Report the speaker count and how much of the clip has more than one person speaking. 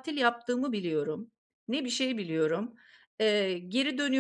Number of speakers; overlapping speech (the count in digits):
1, no overlap